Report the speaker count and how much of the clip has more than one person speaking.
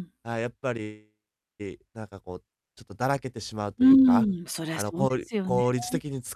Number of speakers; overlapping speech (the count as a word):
two, about 22%